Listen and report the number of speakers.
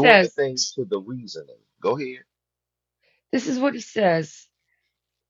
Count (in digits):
2